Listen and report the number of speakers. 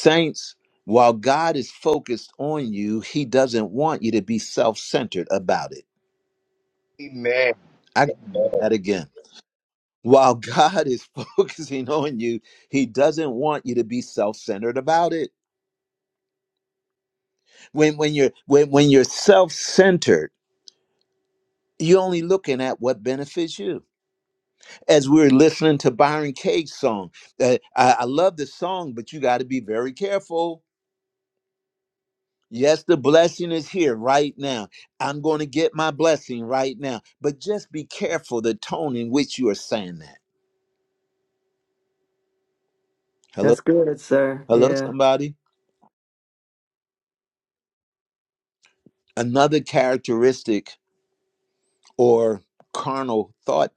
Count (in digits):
3